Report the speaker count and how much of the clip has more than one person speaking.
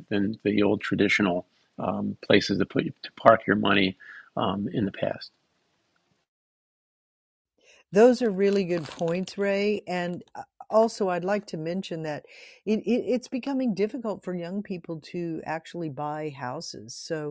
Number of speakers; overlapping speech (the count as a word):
two, no overlap